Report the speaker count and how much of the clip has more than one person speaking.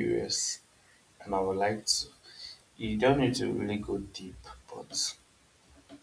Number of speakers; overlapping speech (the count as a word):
one, no overlap